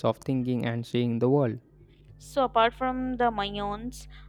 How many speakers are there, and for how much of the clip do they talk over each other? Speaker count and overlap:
two, no overlap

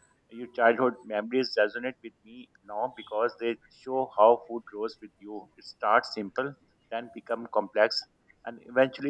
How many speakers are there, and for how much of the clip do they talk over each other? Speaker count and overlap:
one, no overlap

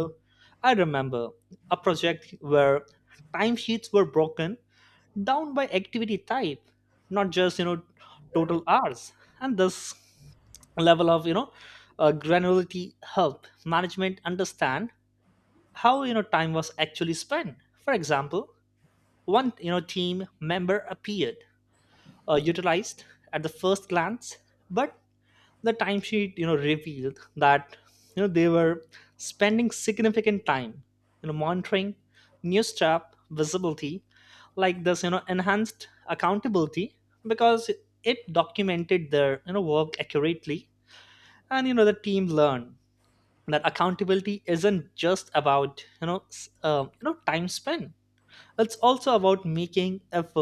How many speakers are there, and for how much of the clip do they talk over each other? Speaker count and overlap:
one, no overlap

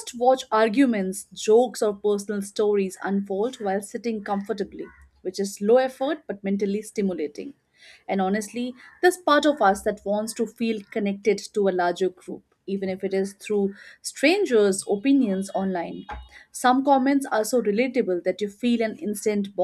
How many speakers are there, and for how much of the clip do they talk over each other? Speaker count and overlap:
one, no overlap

